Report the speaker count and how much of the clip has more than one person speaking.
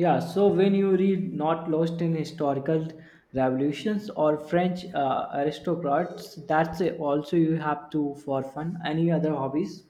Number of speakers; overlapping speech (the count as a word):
one, no overlap